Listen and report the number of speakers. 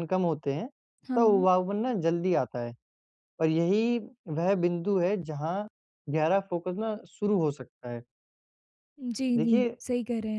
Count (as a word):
two